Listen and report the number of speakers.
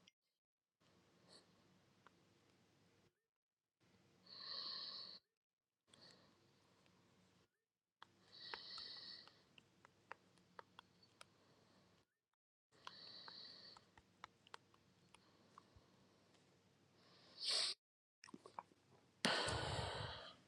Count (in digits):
0